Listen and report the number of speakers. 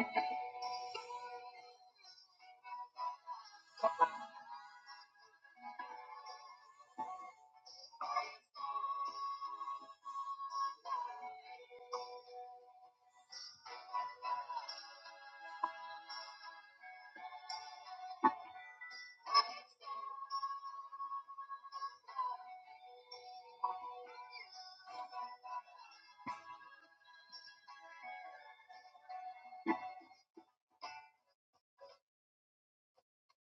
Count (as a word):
zero